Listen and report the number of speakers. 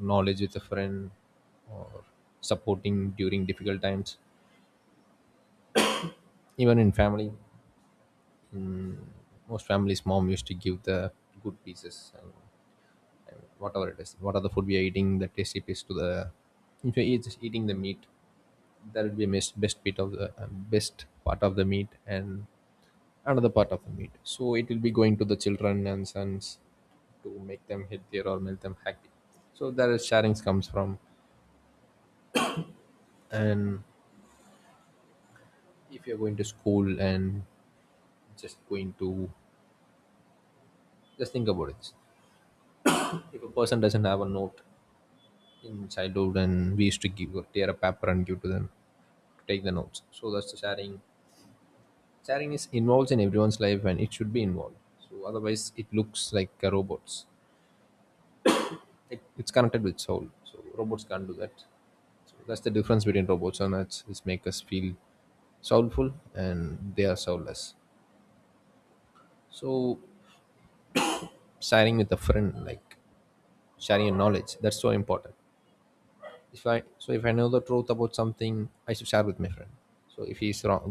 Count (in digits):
1